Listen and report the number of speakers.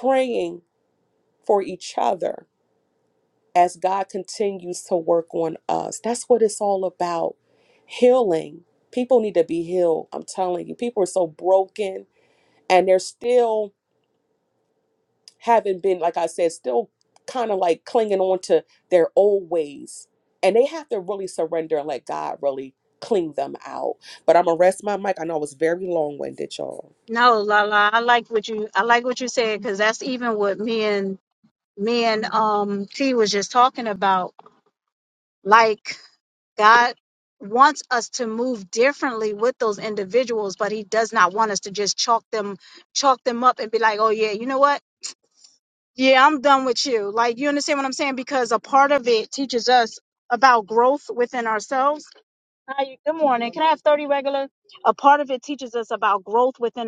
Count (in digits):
2